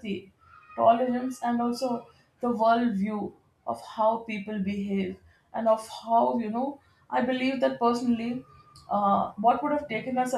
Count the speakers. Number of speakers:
one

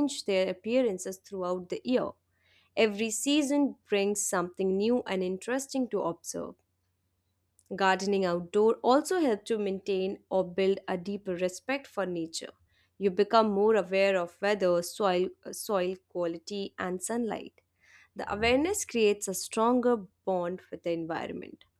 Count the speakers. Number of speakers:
one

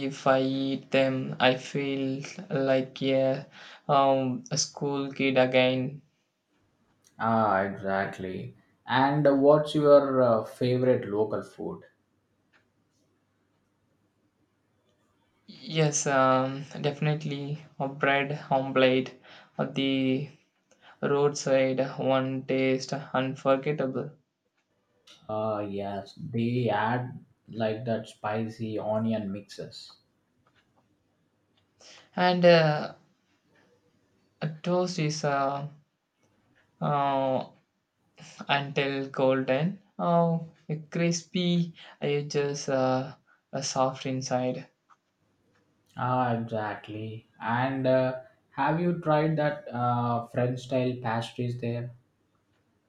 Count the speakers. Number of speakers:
two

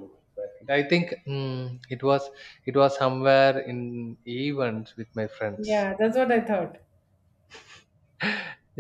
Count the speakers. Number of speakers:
two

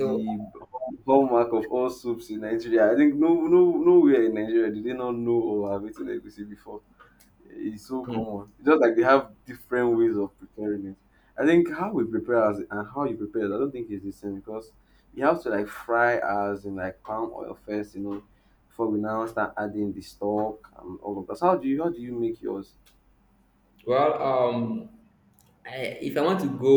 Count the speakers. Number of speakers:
two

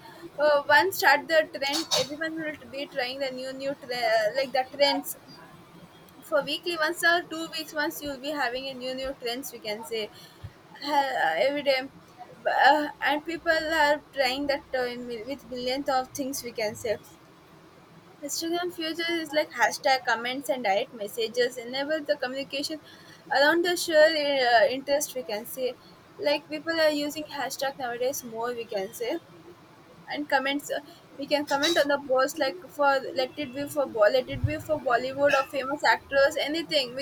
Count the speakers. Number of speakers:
one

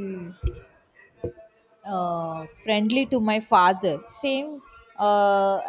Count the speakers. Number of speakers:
one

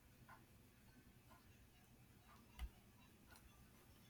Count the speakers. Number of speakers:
zero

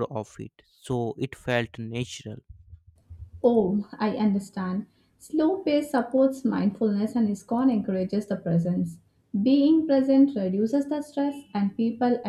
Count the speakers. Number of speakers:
two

